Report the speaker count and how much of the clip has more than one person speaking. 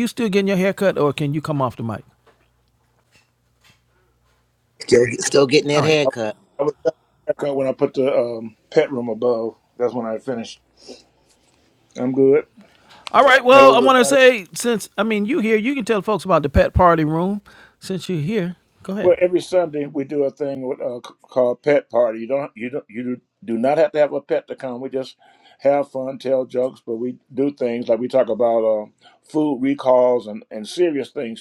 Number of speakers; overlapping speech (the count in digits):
3, about 3%